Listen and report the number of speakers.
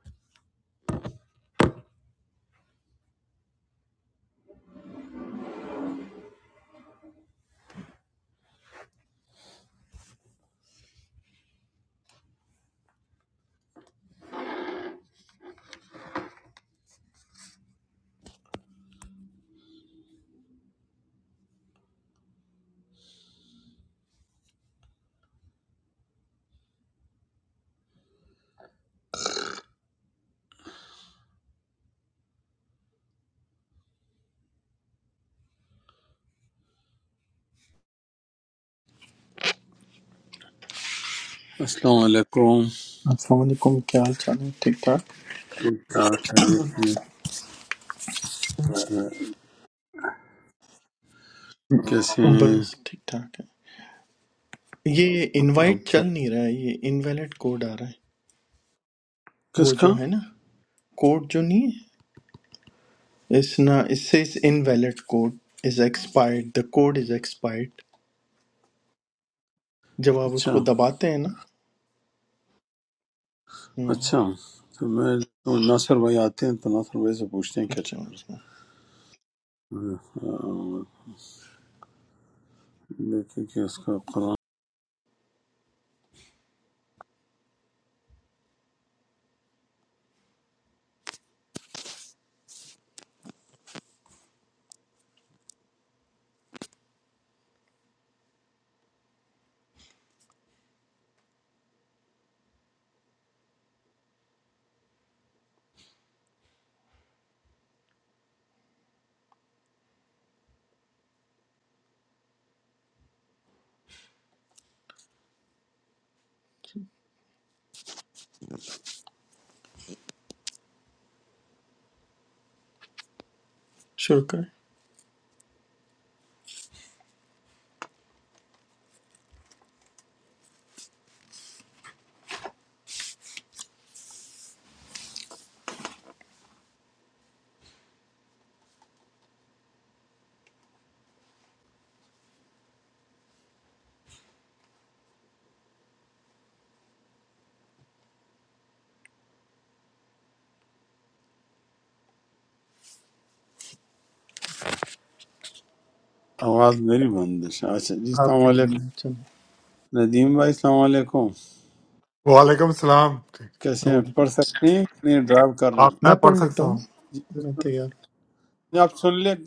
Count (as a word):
three